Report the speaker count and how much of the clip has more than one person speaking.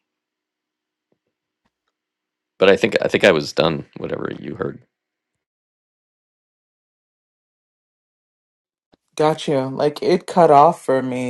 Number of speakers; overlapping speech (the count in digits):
2, no overlap